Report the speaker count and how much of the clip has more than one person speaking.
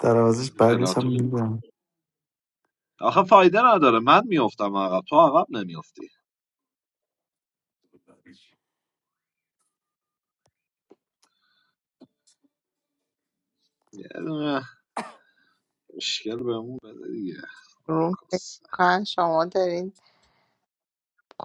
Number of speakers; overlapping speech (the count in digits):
3, about 3%